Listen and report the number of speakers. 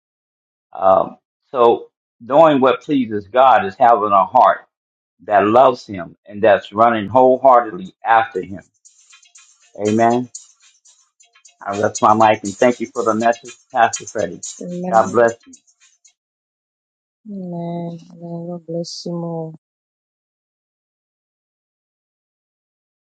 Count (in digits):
2